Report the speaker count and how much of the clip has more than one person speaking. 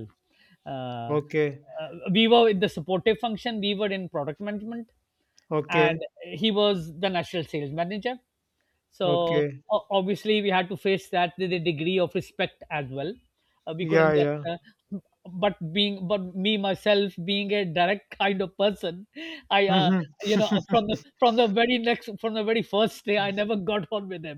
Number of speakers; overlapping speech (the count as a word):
two, about 8%